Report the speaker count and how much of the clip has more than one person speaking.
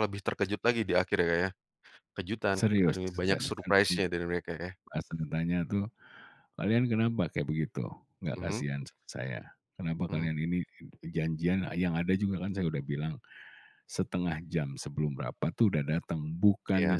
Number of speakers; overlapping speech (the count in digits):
2, about 13%